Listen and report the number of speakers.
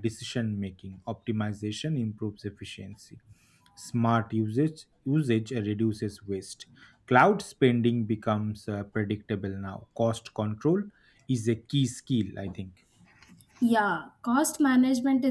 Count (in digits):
2